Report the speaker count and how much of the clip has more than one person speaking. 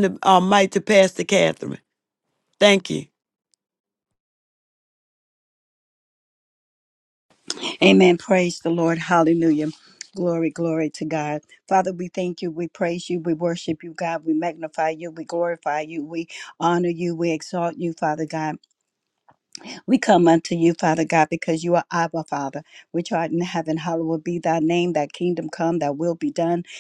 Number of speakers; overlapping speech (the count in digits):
2, no overlap